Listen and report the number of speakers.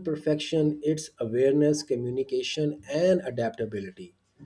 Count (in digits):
1